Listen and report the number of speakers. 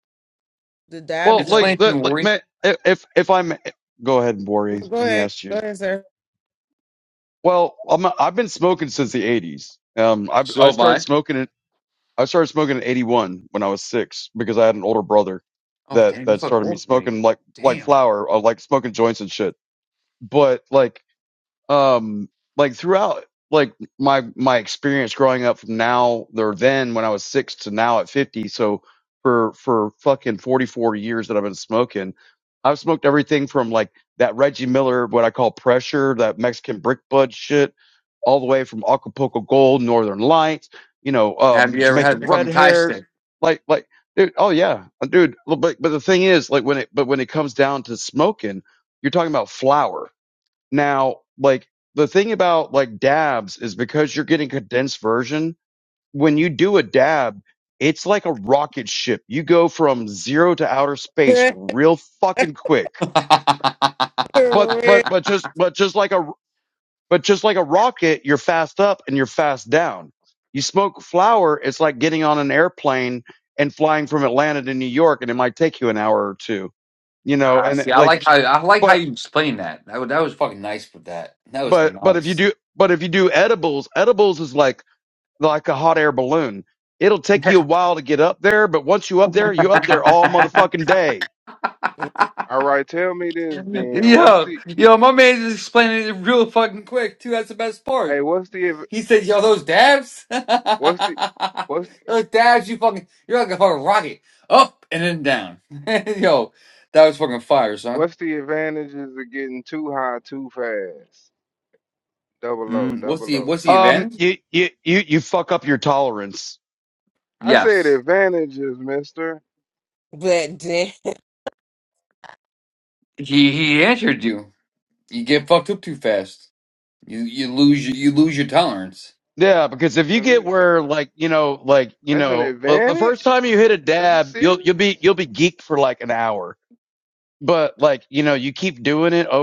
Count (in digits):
4